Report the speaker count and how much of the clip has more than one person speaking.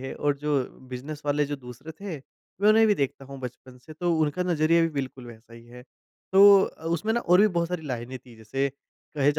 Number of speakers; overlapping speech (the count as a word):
one, no overlap